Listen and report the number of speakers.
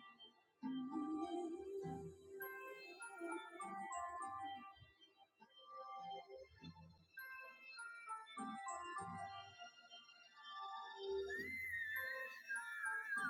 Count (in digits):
0